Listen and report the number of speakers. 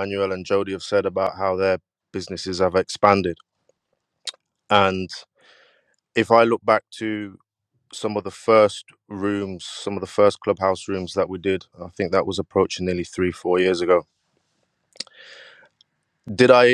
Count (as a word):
one